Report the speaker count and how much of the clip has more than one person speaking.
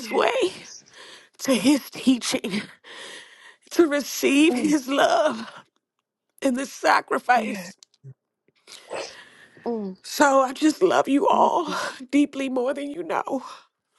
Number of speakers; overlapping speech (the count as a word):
two, about 9%